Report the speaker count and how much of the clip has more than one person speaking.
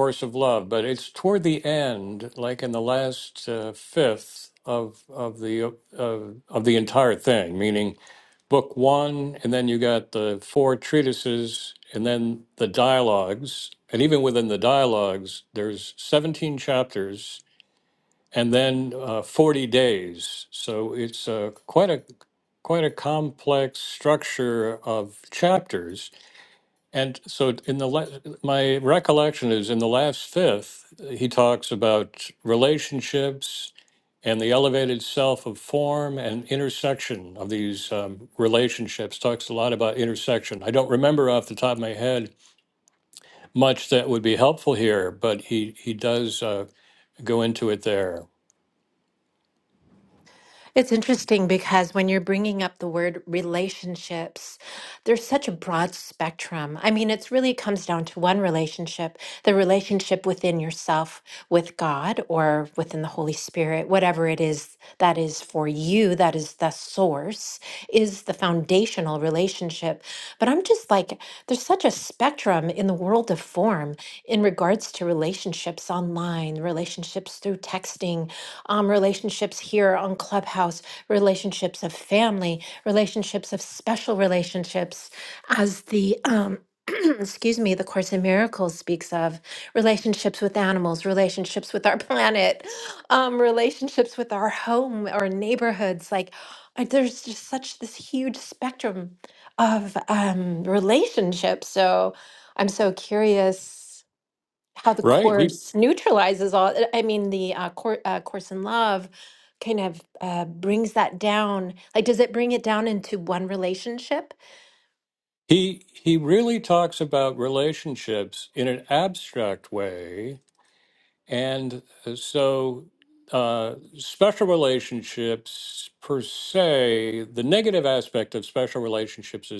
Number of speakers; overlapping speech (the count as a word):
two, under 1%